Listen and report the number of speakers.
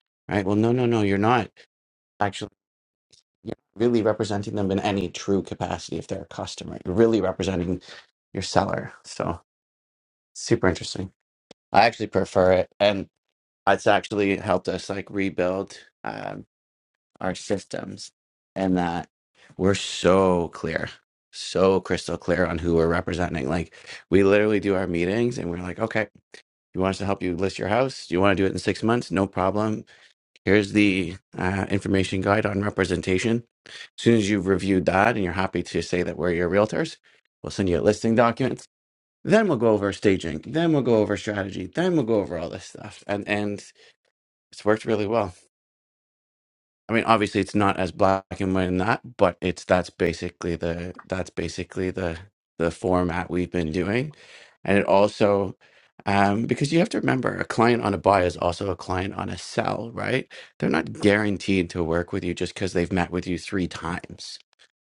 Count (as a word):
one